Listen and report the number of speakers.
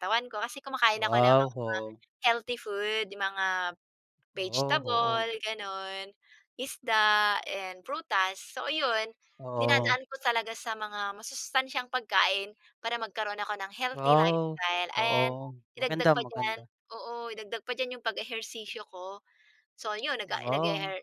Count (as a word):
two